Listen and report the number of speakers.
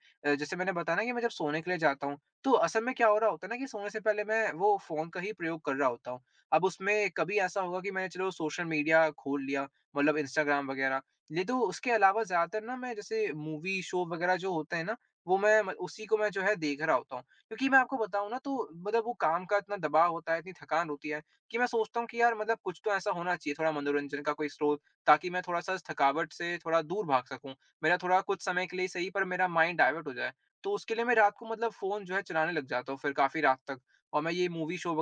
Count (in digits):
1